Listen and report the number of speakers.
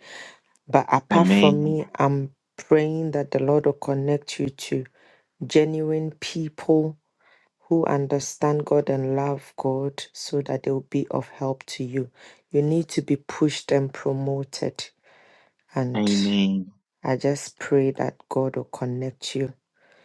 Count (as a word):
two